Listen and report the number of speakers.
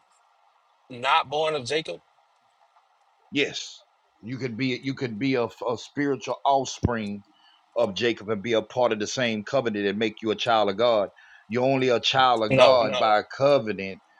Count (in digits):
2